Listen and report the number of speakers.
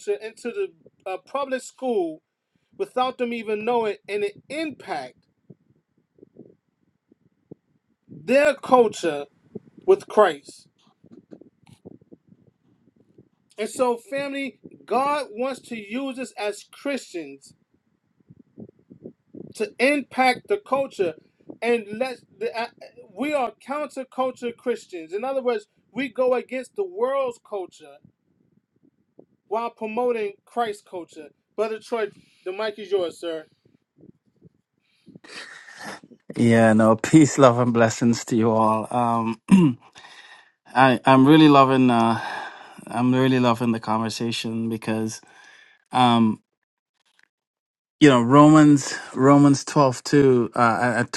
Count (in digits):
2